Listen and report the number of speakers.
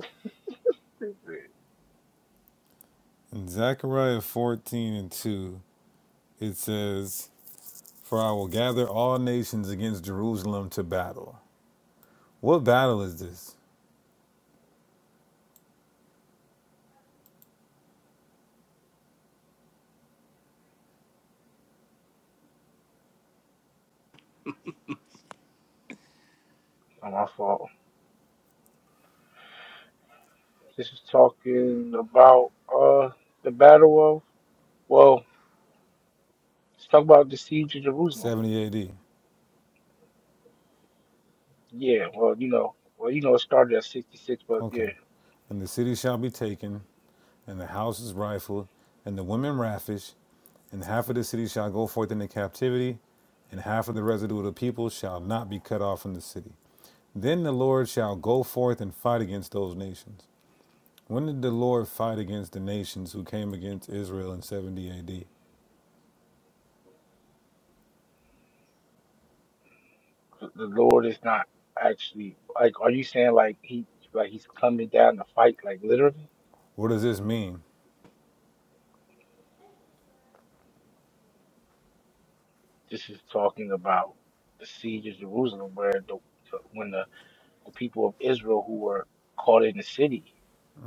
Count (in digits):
2